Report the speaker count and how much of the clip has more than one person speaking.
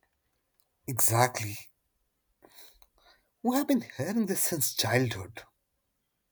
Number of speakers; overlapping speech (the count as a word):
one, no overlap